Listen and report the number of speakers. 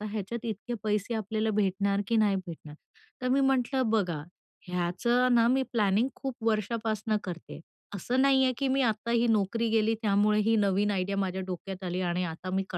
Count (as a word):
one